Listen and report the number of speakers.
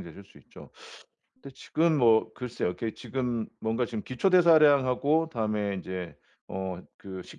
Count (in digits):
1